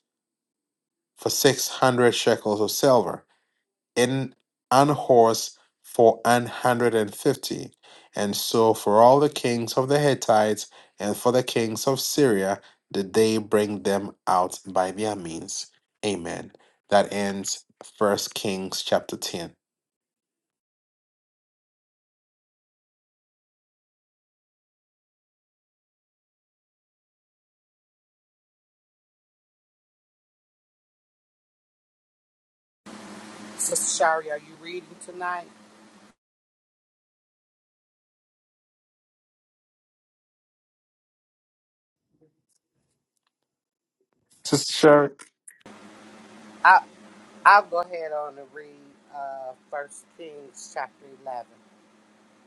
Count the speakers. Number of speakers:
two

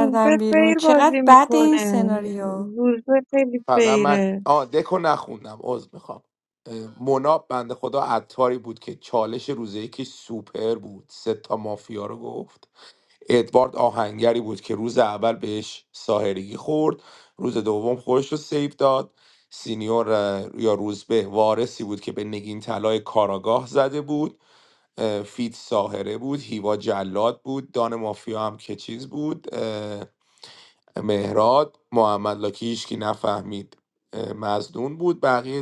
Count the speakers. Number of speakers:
three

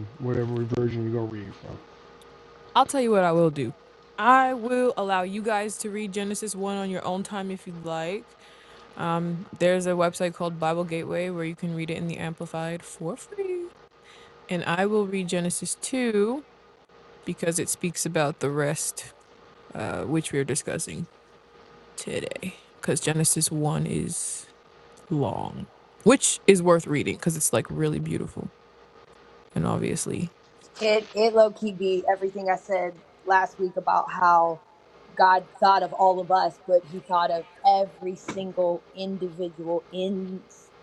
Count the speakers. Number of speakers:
three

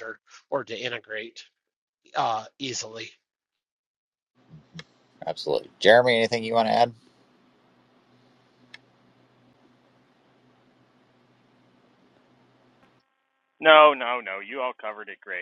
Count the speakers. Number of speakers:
three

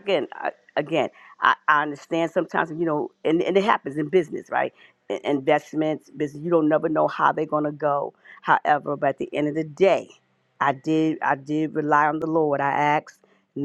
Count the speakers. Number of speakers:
one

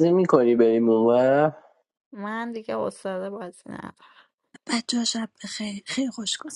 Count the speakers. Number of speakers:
three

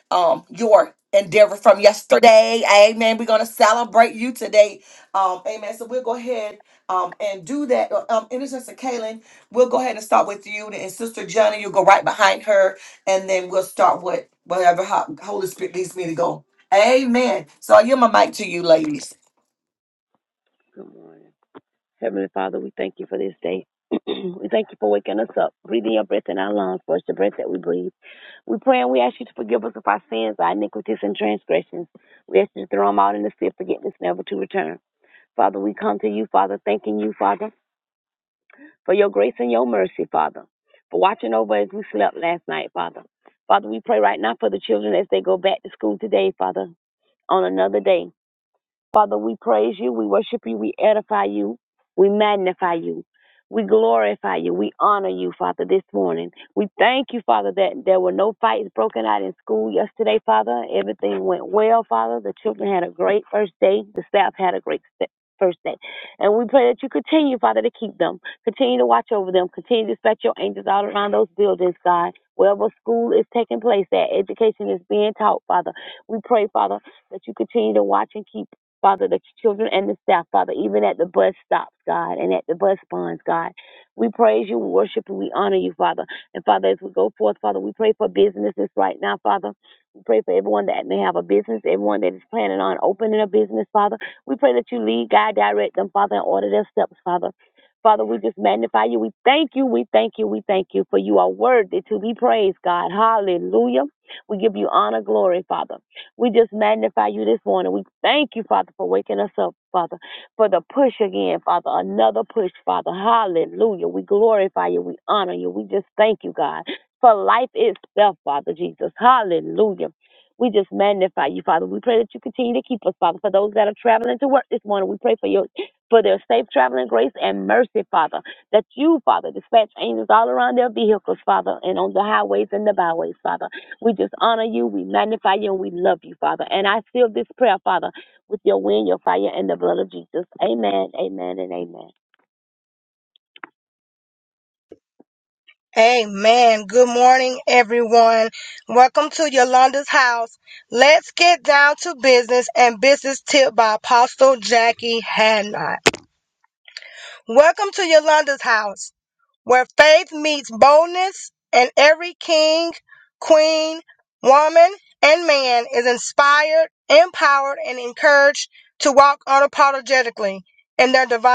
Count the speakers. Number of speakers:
three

